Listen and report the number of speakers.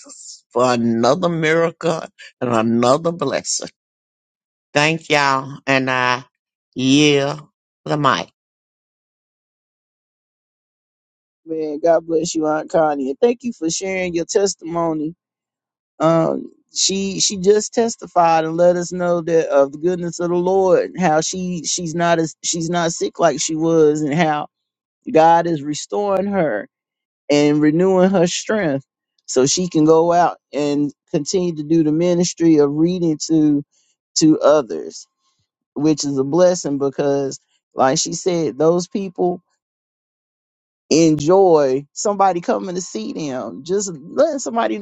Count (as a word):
two